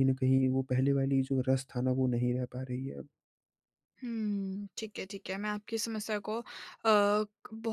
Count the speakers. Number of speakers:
two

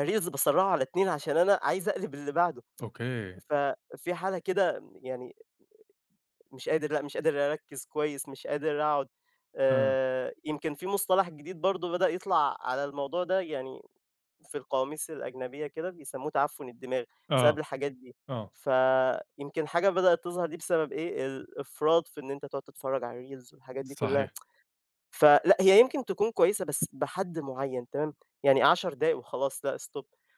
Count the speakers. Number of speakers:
two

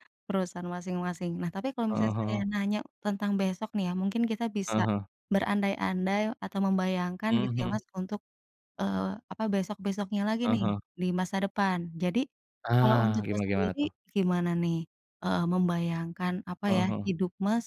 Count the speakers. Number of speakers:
two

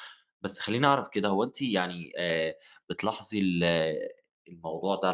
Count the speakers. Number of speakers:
one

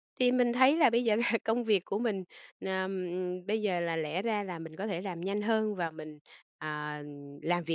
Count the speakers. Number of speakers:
one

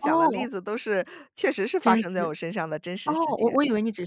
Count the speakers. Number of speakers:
two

